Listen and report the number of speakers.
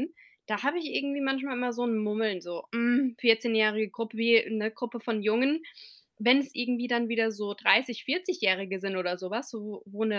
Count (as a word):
one